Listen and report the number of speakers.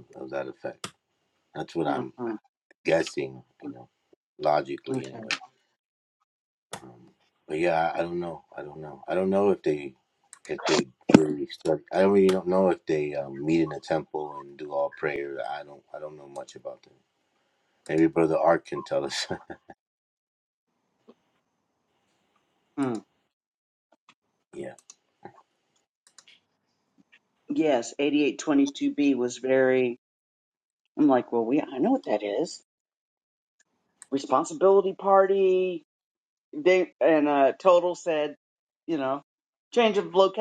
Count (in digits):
2